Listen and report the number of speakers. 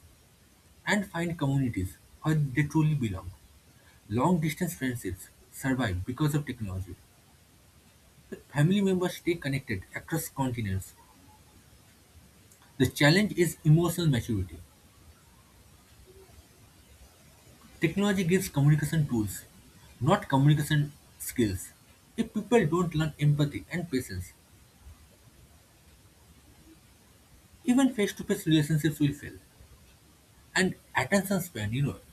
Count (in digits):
1